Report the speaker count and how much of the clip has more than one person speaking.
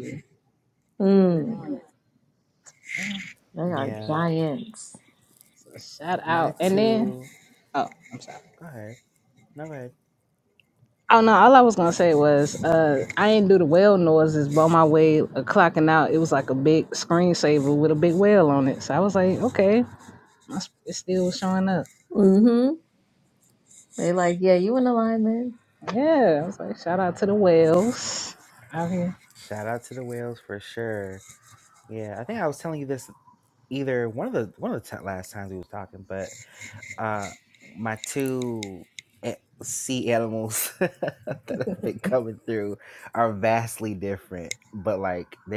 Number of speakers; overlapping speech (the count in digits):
3, about 4%